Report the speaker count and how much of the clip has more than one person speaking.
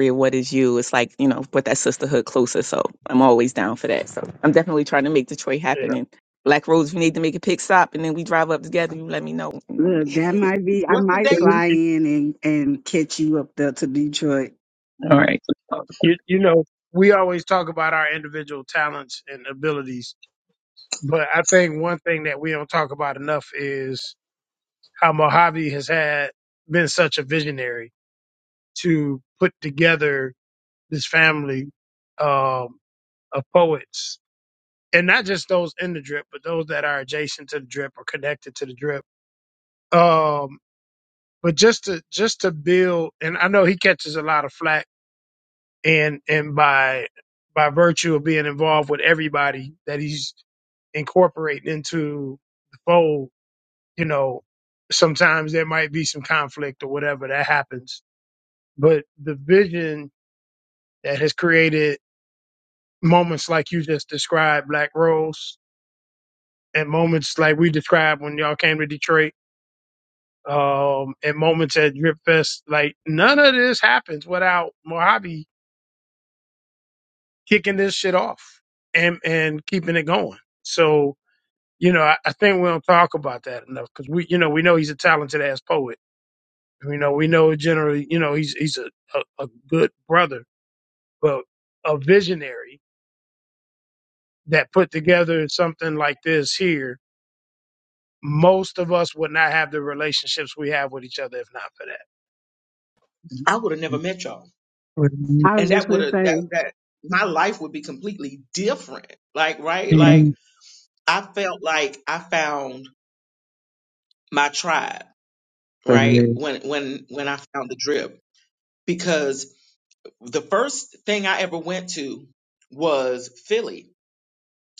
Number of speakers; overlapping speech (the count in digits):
4, about 2%